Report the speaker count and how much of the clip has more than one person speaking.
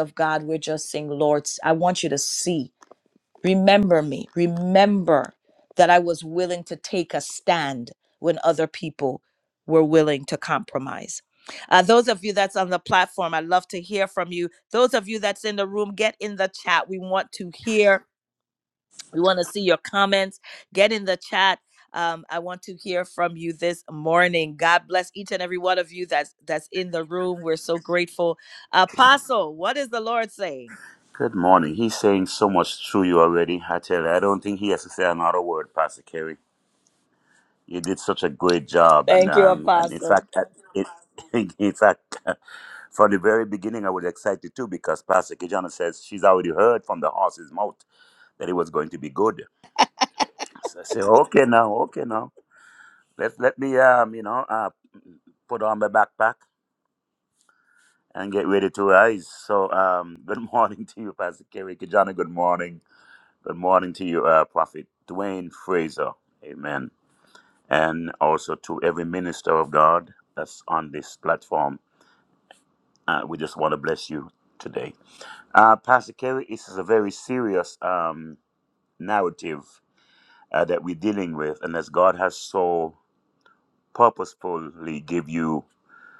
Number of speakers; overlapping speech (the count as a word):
two, about 1%